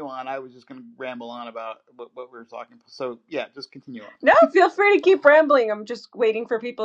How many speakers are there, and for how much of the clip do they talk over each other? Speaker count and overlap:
2, no overlap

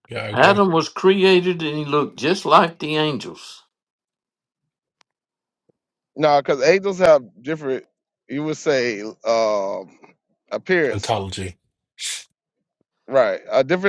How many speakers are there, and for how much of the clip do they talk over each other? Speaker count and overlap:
3, about 3%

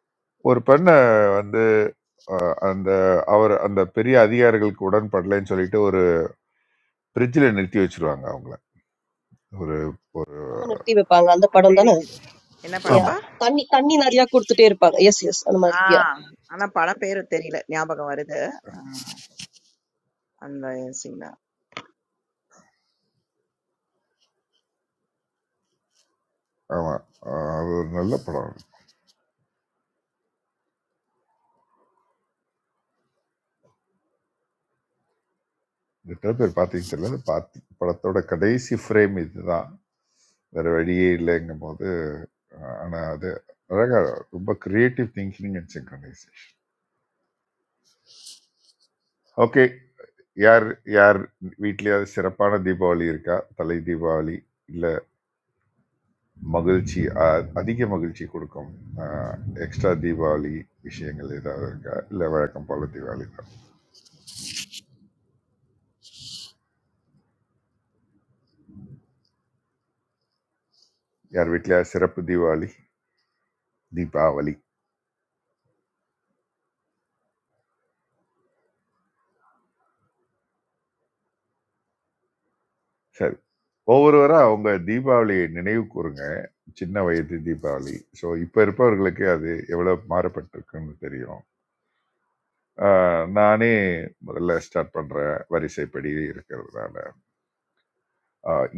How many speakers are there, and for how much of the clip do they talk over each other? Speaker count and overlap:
3, about 1%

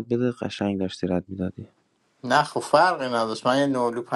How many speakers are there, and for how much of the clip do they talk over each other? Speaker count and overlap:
2, no overlap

